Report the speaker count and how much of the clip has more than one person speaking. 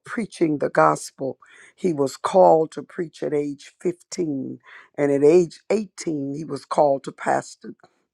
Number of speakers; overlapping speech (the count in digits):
1, no overlap